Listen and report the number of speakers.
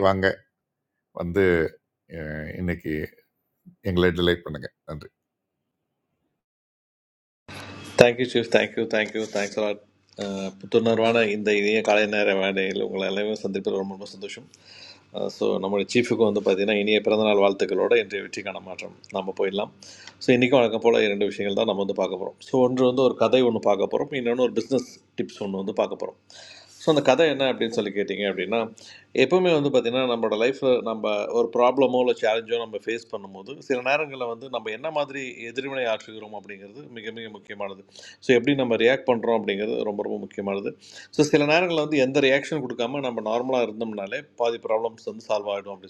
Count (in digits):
2